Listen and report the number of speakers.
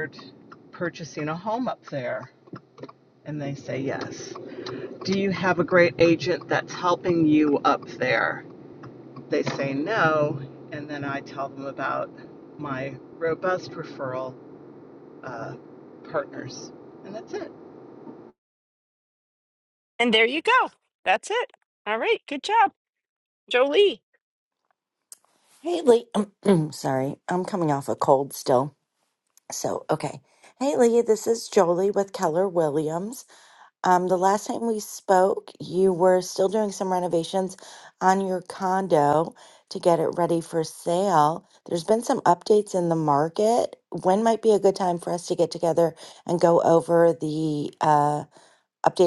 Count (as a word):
three